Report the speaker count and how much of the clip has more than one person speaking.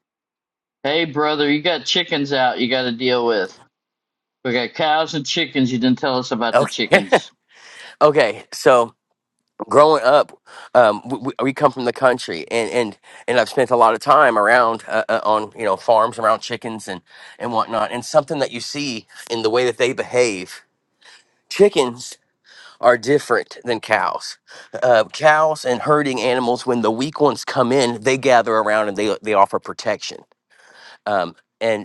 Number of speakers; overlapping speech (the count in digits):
2, about 2%